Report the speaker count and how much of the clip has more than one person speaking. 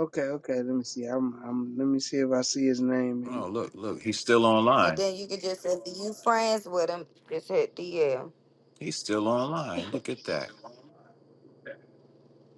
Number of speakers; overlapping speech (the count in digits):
3, about 5%